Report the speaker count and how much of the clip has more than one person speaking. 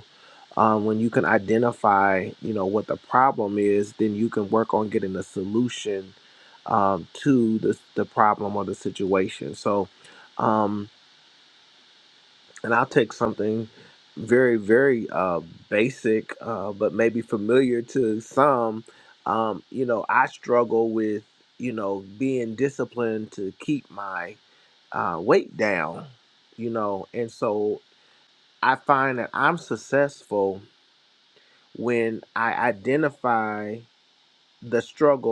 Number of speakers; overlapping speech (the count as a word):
one, no overlap